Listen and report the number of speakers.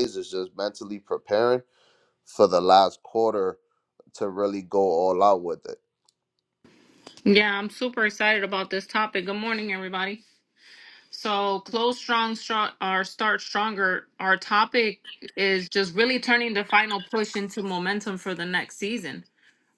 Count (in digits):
2